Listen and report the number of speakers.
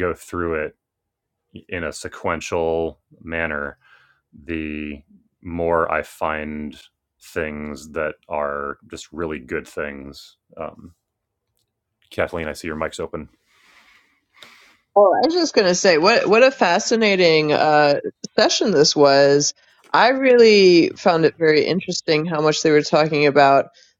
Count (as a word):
two